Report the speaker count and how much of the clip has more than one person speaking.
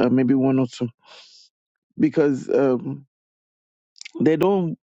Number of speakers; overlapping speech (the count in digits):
1, no overlap